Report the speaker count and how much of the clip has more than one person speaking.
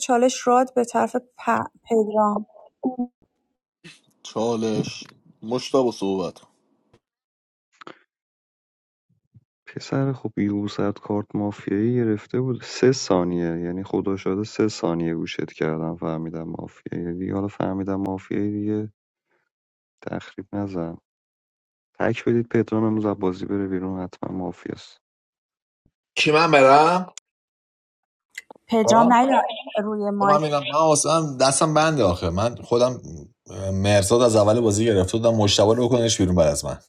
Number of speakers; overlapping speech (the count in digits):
4, under 1%